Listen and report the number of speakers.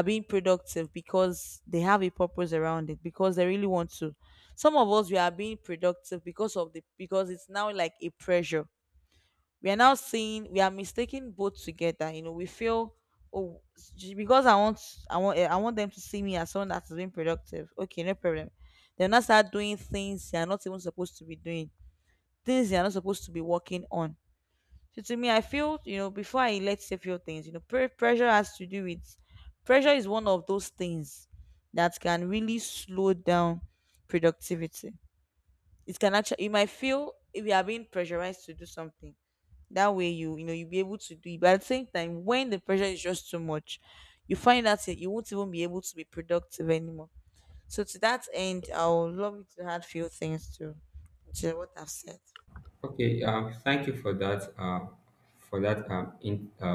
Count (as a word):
two